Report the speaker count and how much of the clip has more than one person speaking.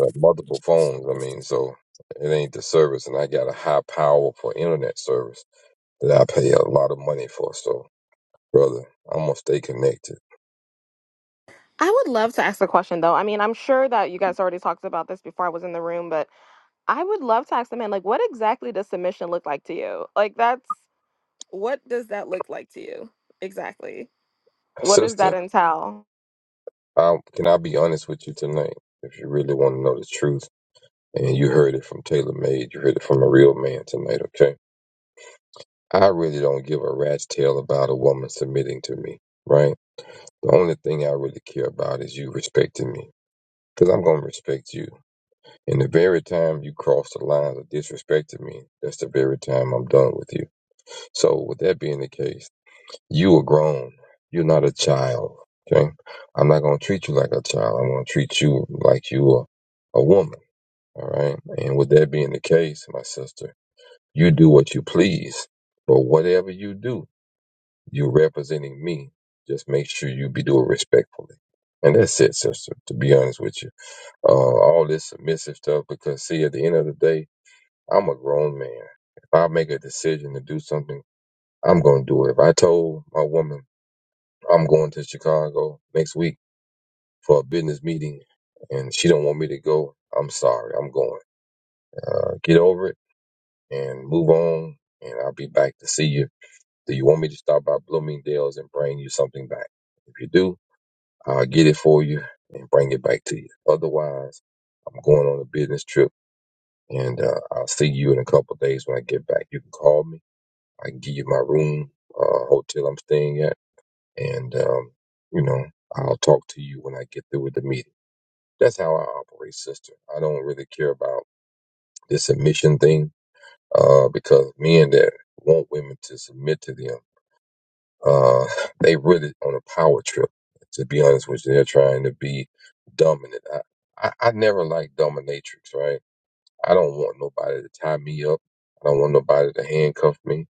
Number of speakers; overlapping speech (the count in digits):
2, under 1%